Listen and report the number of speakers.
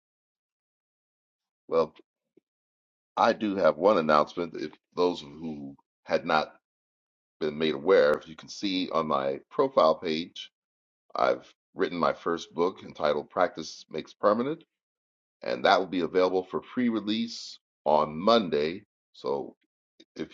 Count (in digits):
1